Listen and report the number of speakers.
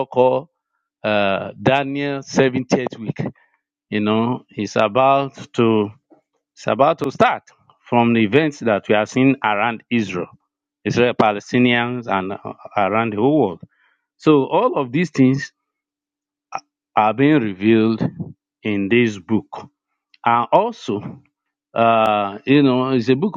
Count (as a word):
one